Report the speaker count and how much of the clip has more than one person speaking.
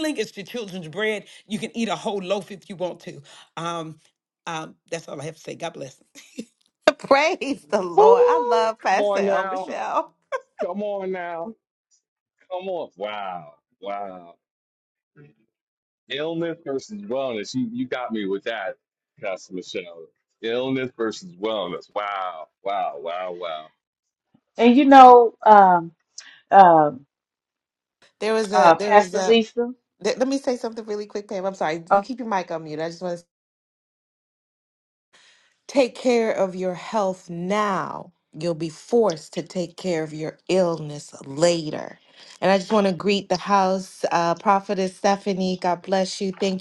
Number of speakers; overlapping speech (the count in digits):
4, about 6%